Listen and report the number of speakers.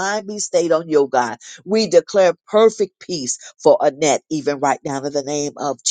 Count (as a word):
one